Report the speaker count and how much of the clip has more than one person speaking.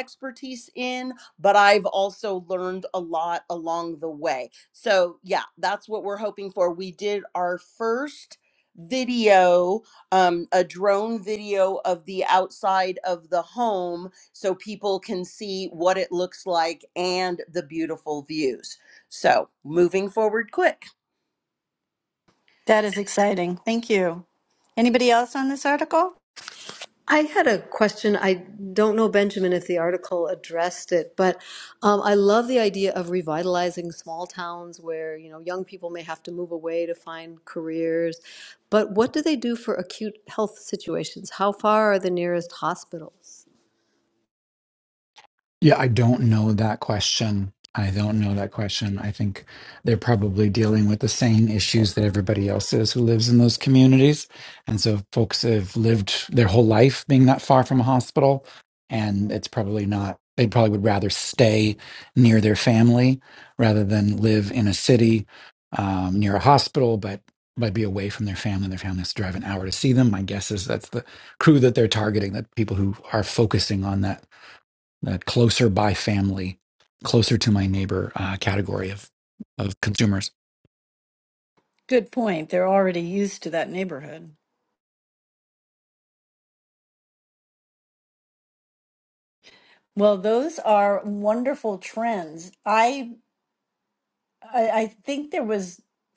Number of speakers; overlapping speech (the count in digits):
4, no overlap